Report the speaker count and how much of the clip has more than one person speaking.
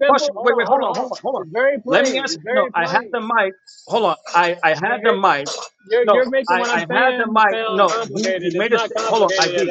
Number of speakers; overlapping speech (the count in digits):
2, about 69%